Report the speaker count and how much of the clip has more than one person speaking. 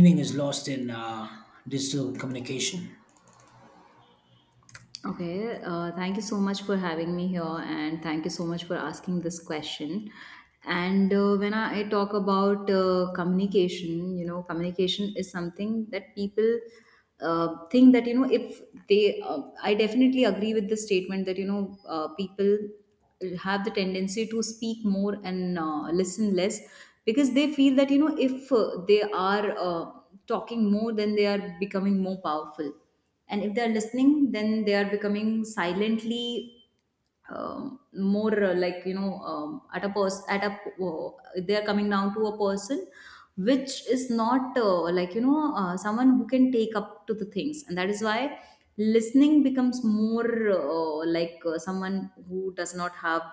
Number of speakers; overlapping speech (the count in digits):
2, no overlap